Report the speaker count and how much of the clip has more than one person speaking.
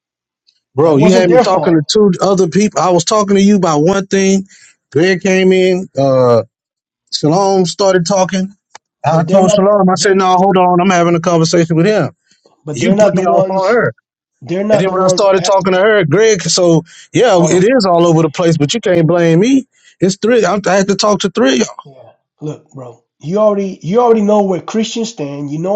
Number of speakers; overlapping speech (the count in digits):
2, about 14%